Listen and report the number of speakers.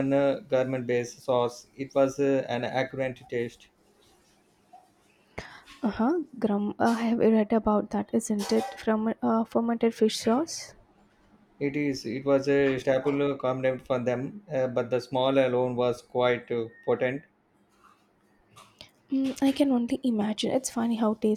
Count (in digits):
2